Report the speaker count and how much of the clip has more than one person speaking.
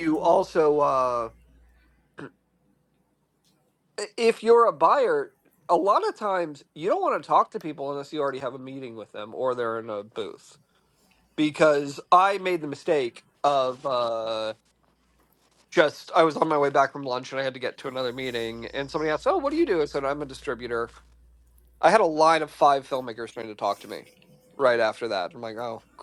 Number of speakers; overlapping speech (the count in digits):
1, no overlap